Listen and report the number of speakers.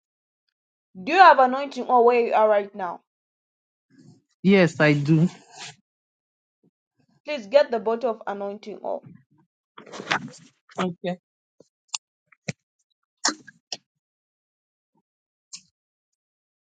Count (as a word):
two